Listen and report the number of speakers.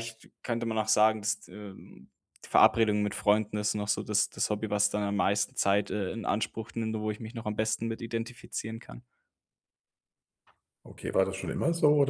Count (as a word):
two